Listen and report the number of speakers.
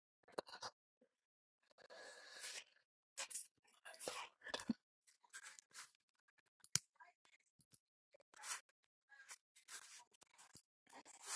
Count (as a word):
zero